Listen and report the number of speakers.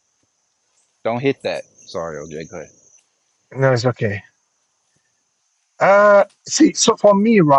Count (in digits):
2